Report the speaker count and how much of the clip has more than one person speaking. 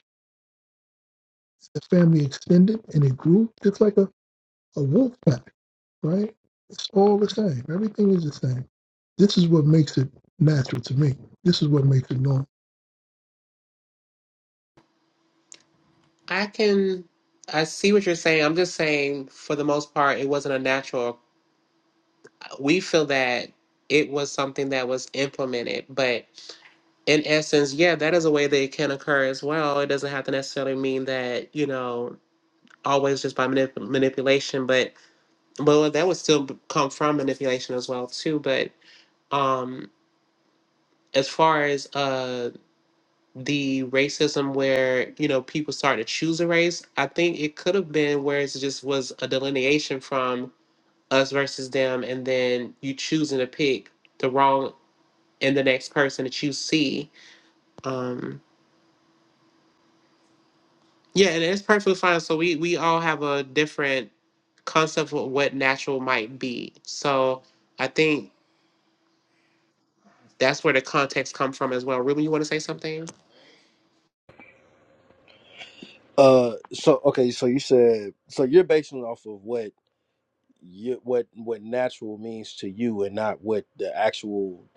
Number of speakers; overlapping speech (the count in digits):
3, no overlap